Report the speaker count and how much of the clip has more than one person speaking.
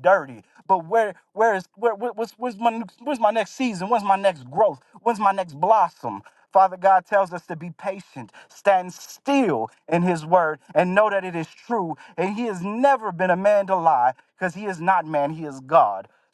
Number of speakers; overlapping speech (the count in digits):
1, no overlap